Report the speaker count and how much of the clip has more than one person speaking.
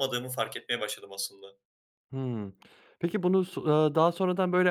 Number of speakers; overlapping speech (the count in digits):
2, no overlap